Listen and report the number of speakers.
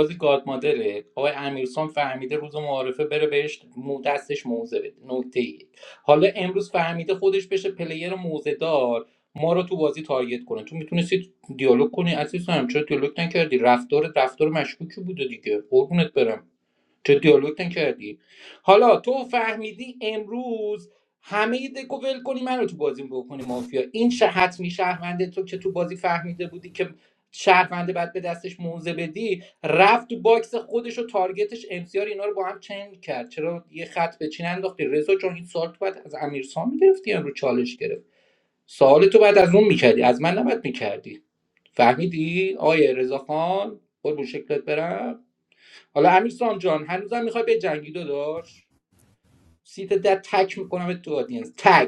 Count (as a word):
one